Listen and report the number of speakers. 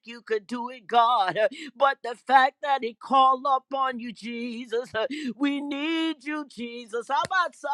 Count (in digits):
1